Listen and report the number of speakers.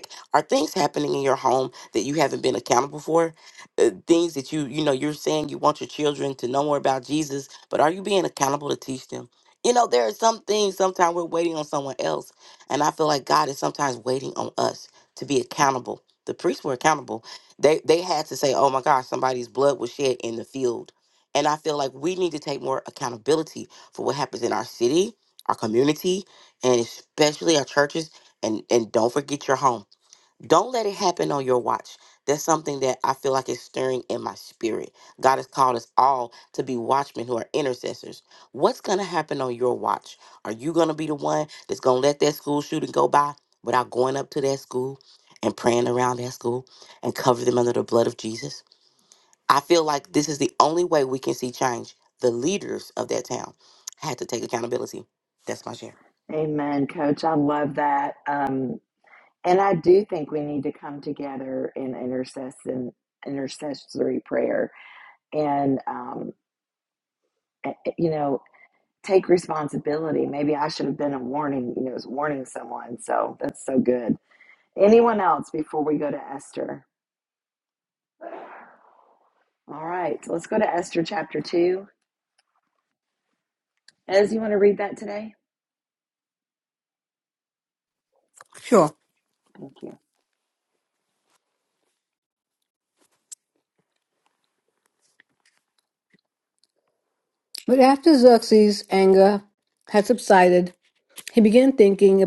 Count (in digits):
3